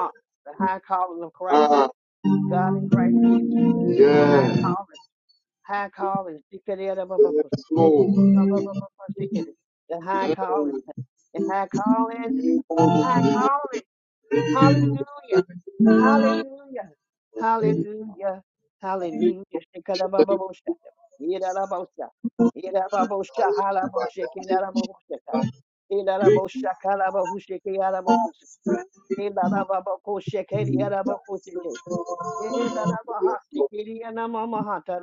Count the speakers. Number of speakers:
2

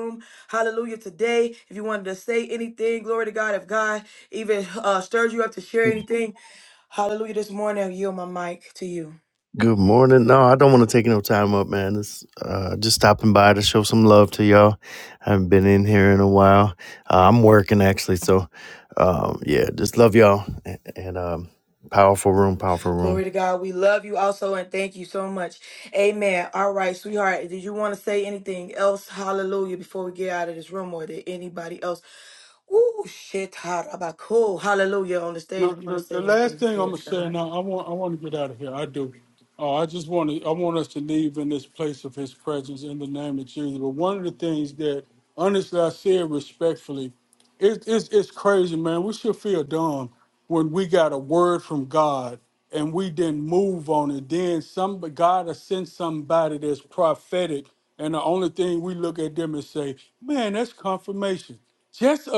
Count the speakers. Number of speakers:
3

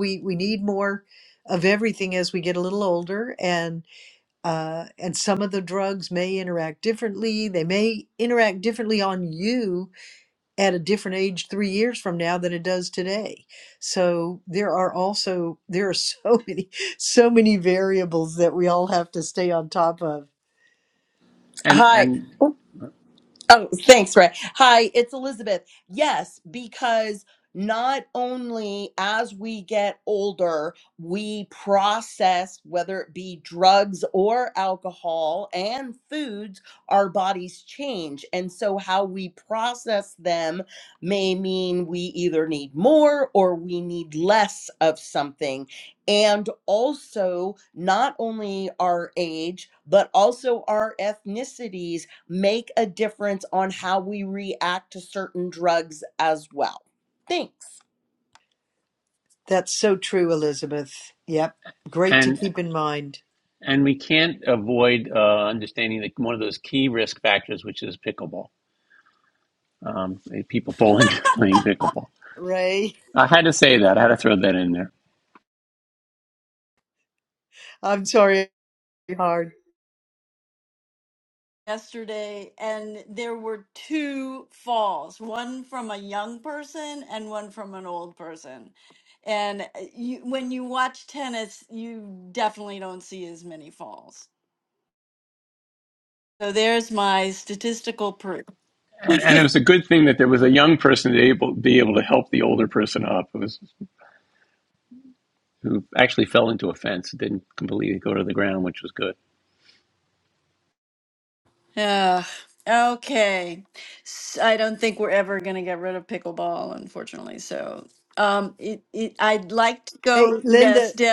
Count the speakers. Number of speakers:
4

